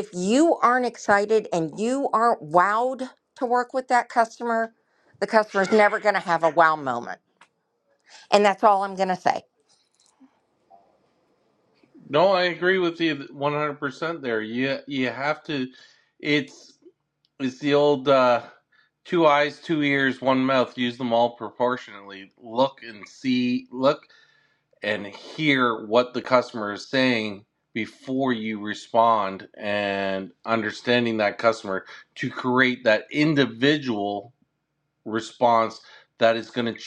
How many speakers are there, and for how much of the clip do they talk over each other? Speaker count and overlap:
2, no overlap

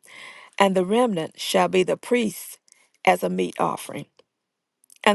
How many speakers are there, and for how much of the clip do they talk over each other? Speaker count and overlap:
1, no overlap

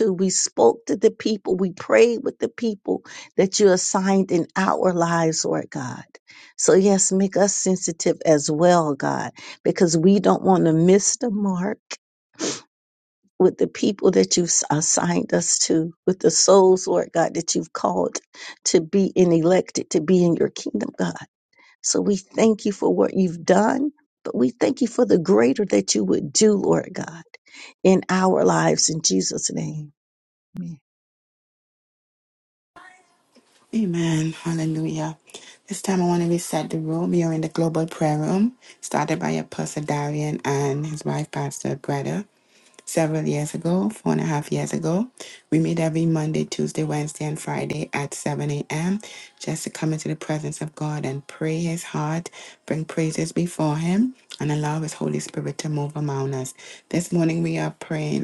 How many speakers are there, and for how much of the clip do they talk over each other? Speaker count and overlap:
2, no overlap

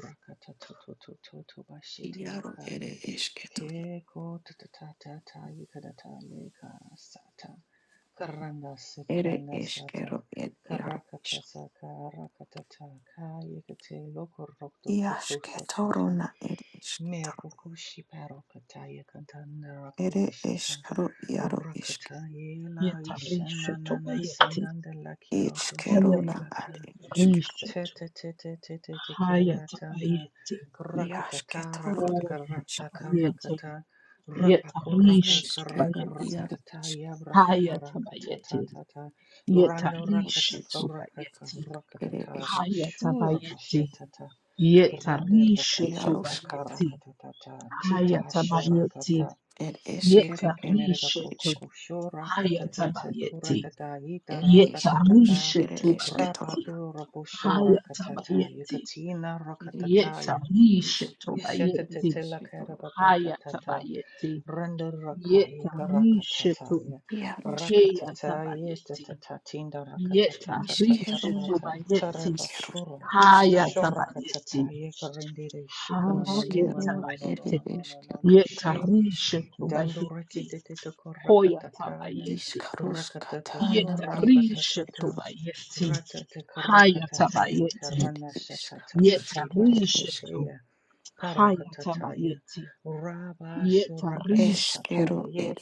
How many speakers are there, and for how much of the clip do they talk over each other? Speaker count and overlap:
3, about 57%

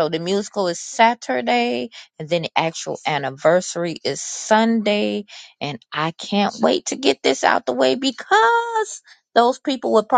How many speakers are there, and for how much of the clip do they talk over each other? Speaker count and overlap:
1, no overlap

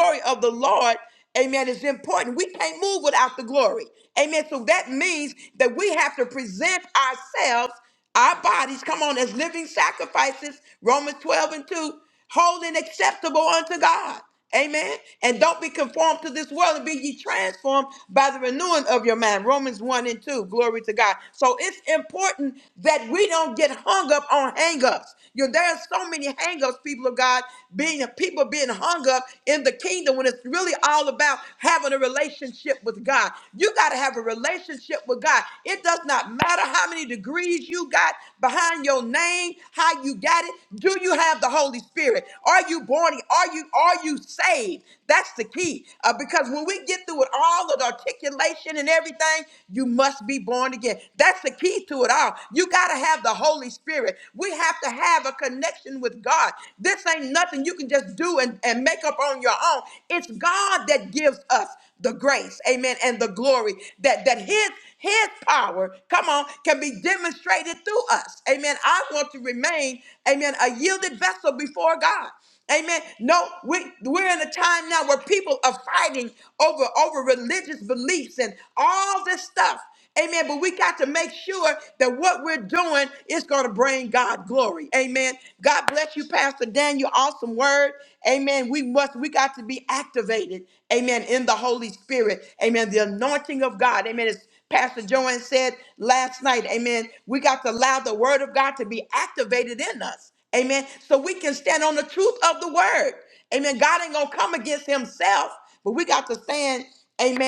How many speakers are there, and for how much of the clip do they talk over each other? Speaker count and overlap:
1, no overlap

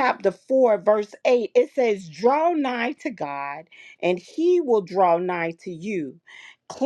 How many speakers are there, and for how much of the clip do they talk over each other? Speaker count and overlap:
1, no overlap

